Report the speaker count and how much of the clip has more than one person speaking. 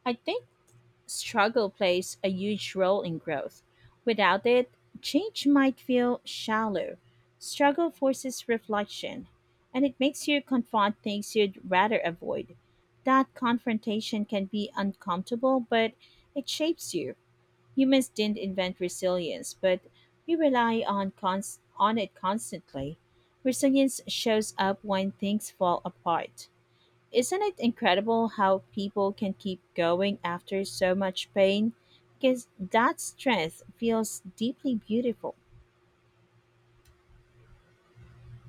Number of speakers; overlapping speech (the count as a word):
one, no overlap